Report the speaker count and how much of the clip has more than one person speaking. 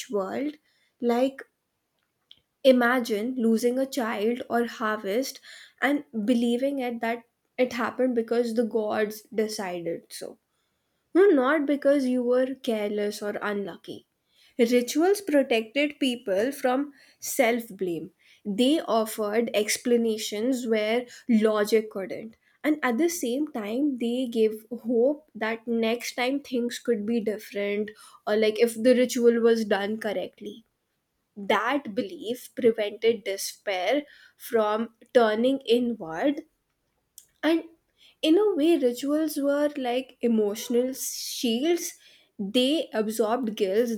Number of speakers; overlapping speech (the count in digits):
1, no overlap